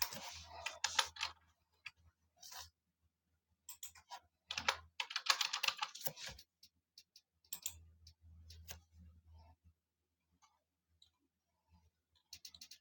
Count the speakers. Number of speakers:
0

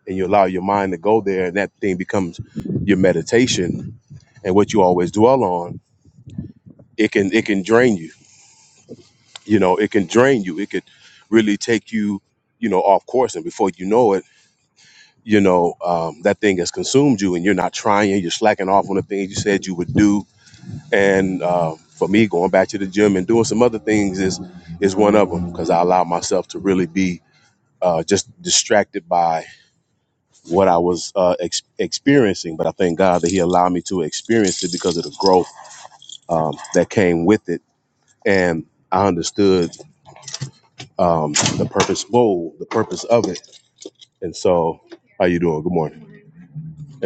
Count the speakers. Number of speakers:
1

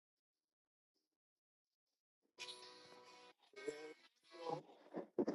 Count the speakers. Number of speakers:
0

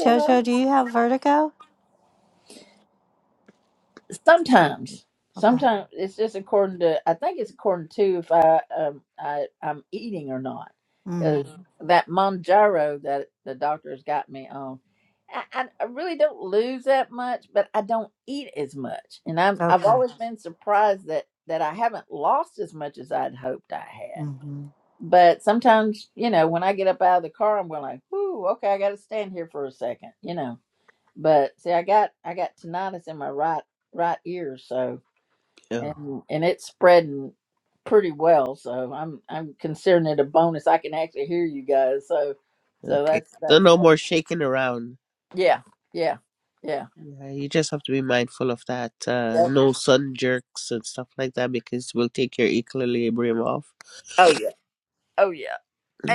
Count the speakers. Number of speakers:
3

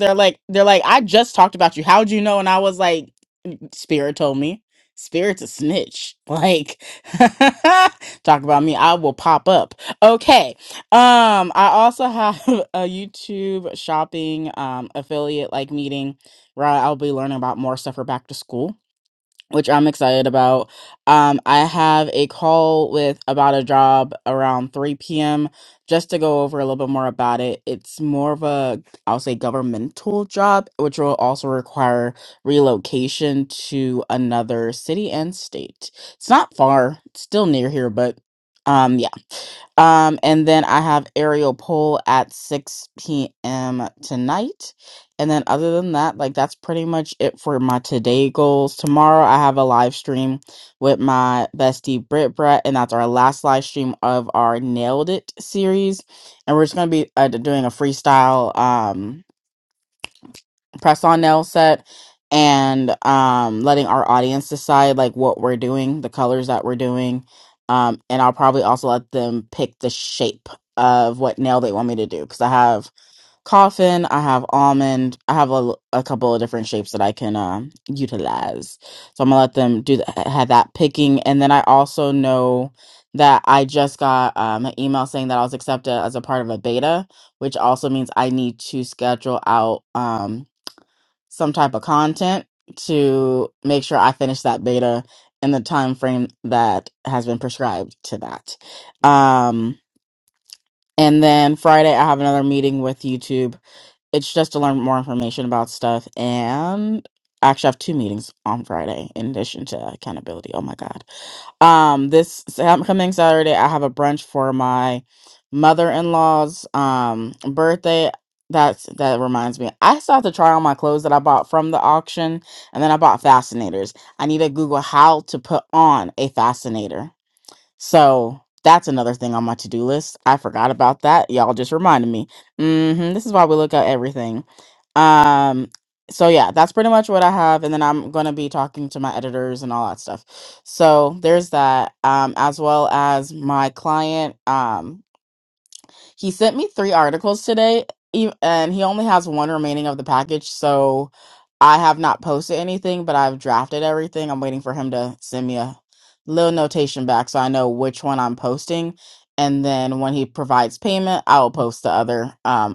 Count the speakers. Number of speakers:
1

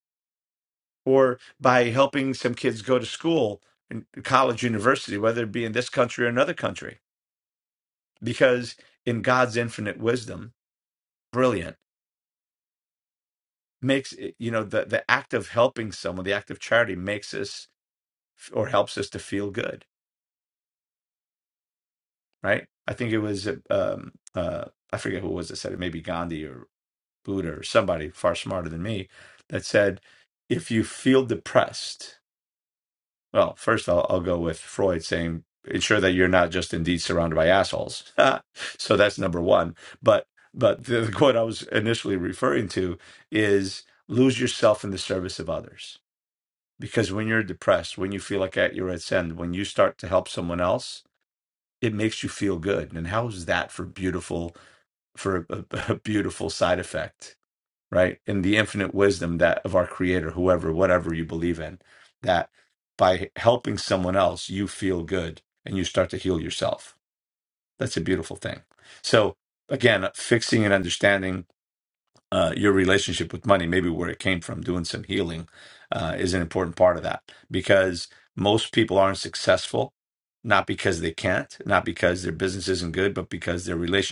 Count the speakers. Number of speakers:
1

